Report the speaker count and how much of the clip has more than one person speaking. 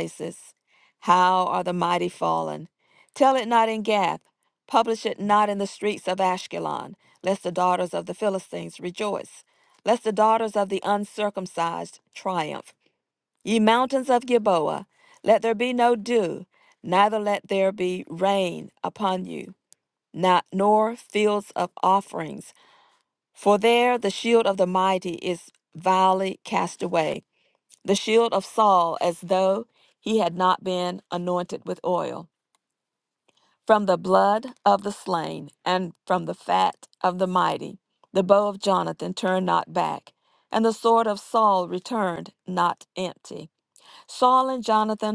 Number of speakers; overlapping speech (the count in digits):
1, no overlap